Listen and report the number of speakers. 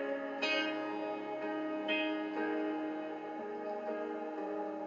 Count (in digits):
0